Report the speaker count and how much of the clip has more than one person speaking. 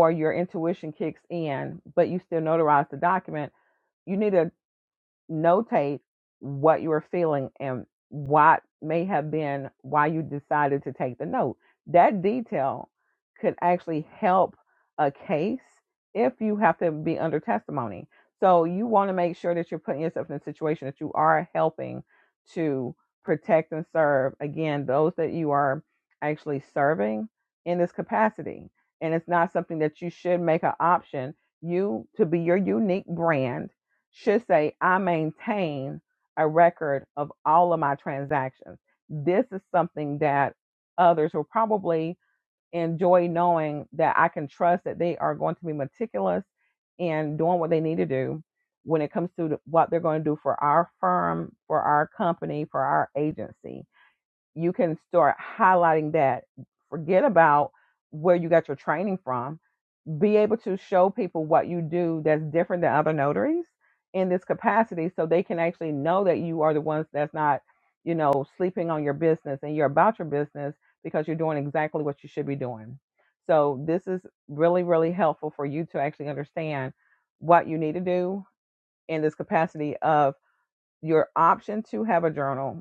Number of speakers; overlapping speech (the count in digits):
1, no overlap